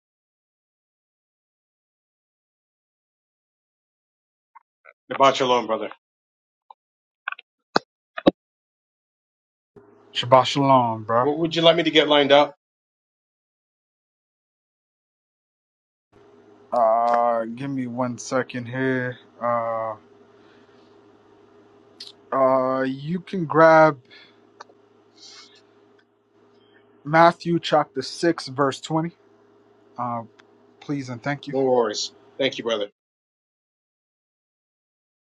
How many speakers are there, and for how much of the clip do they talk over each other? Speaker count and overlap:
two, under 1%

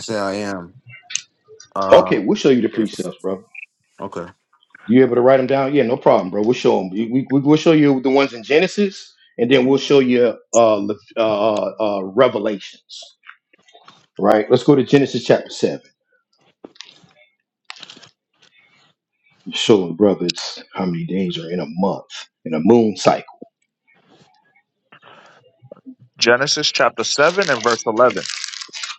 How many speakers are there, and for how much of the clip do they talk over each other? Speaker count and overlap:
three, about 1%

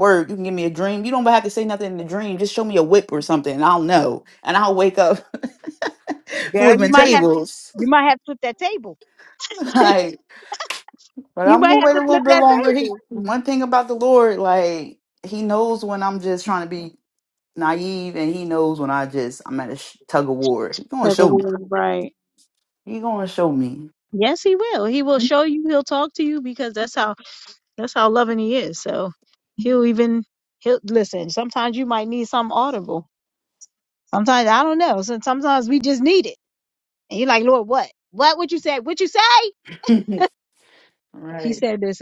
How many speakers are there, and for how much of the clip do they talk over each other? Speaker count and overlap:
two, about 7%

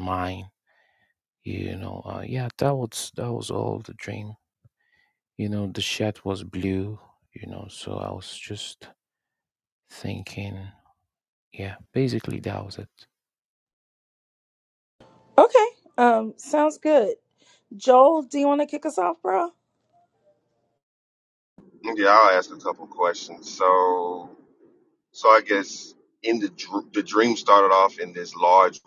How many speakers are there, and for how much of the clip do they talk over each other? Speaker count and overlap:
three, no overlap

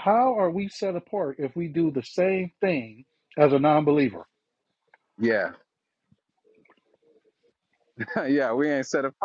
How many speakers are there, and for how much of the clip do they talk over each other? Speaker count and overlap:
two, no overlap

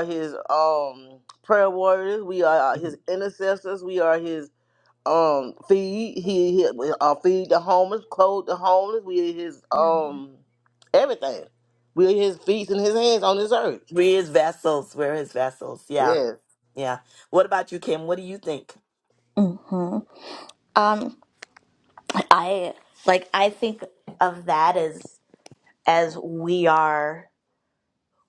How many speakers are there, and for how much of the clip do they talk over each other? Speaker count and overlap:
three, about 2%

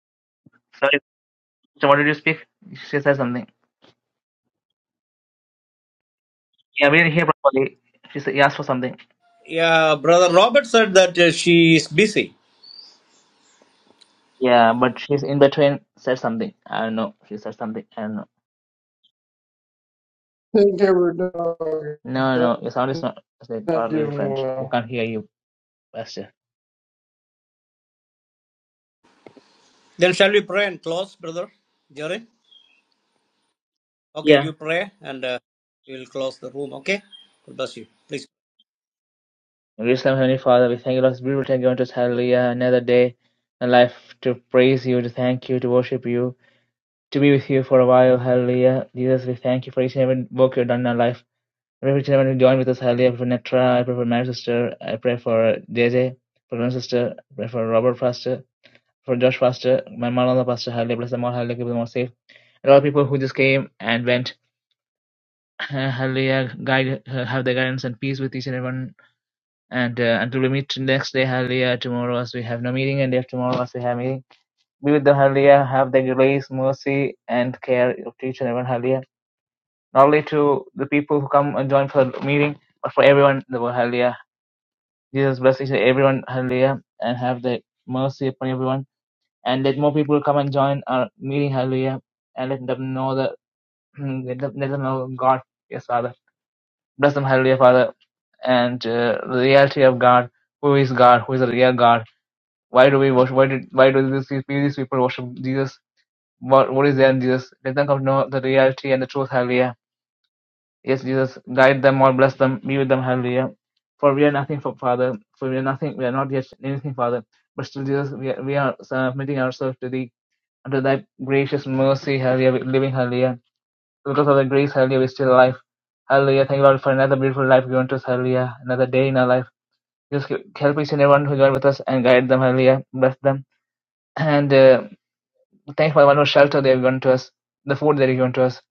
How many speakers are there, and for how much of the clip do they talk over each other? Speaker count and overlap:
three, about 1%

